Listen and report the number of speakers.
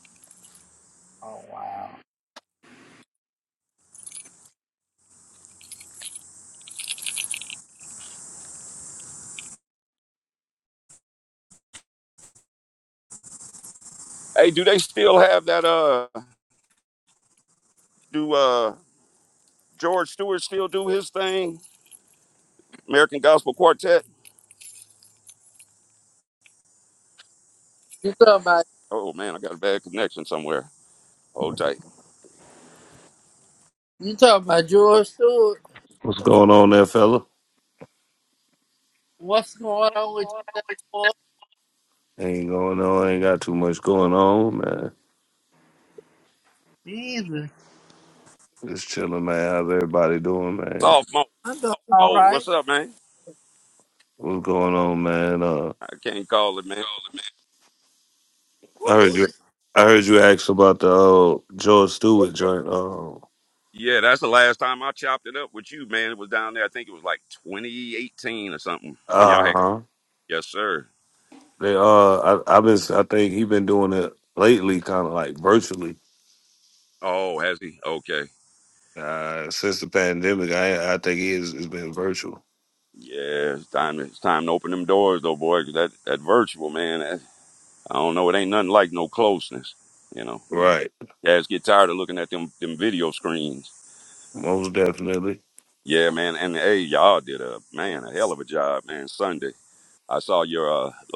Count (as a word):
three